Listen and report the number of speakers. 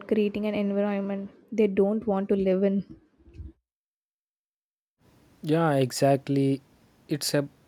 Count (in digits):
2